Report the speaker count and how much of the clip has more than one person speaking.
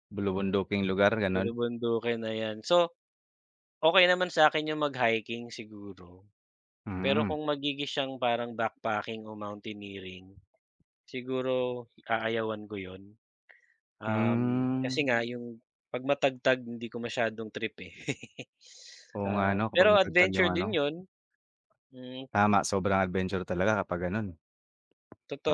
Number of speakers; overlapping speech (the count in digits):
2, about 12%